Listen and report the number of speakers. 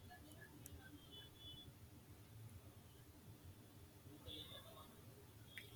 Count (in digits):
0